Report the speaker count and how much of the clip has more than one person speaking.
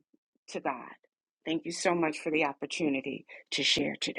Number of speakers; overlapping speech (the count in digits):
1, no overlap